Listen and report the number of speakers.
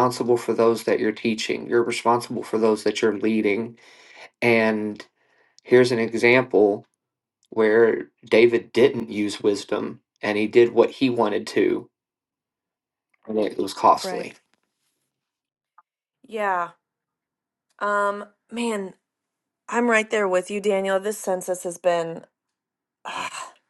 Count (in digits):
2